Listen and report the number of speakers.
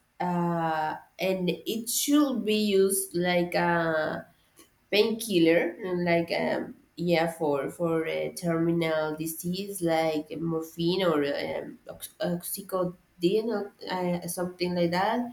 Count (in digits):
1